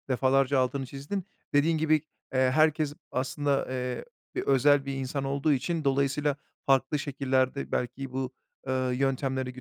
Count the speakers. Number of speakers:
1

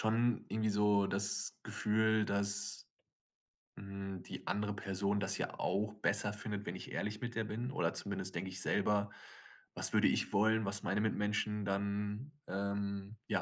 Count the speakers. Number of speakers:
1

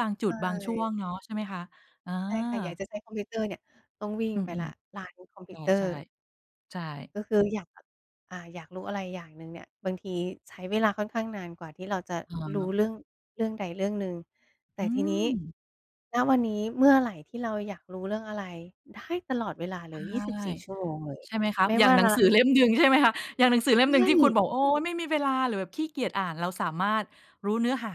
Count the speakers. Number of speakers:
2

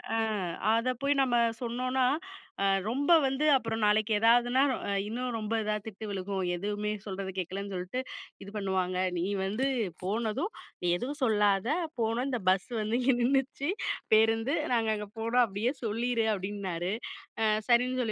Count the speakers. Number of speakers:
1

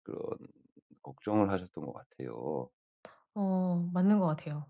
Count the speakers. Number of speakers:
2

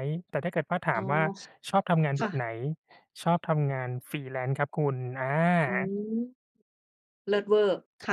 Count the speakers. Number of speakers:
2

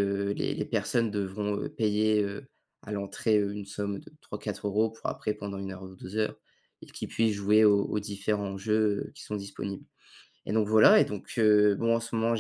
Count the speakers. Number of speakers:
1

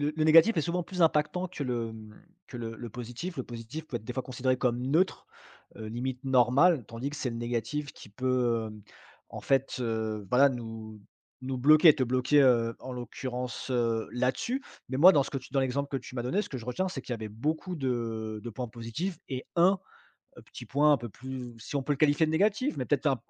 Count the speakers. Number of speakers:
1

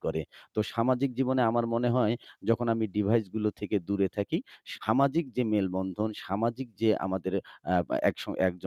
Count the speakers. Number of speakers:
1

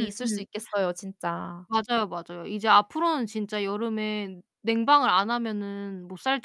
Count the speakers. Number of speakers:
2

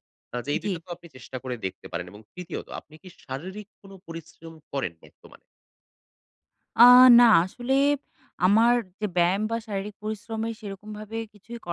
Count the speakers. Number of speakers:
2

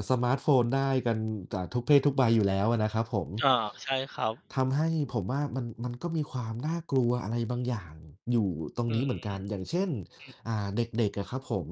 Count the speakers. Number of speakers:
2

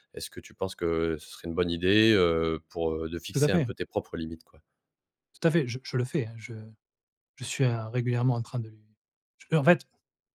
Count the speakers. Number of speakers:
2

